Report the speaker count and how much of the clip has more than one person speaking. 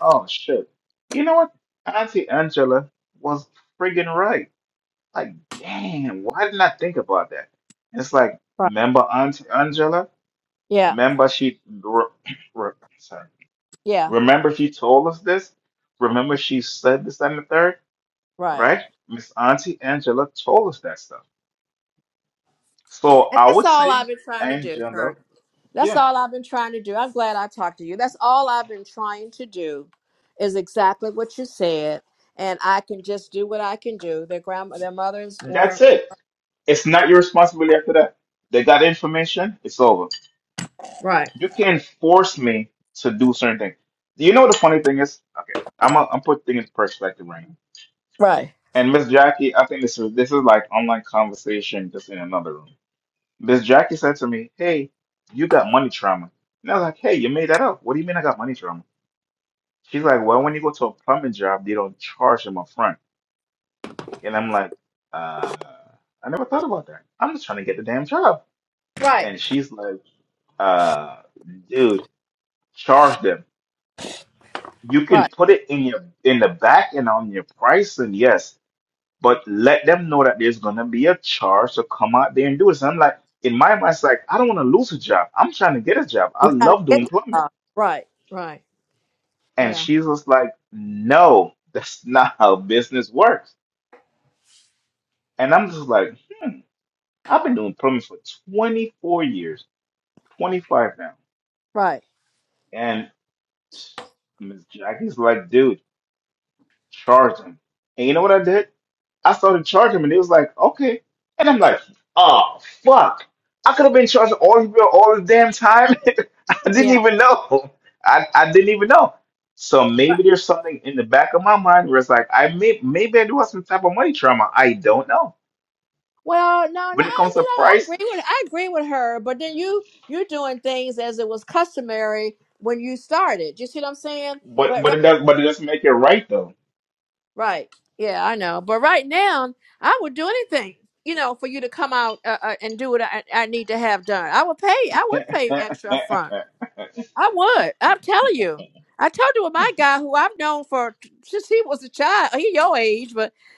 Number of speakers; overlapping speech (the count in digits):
2, about 3%